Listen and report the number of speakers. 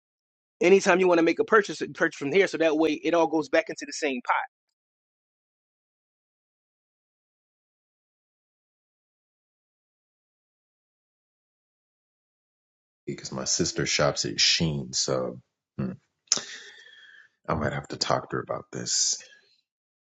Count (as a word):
two